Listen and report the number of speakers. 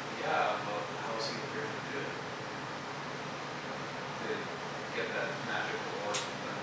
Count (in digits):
1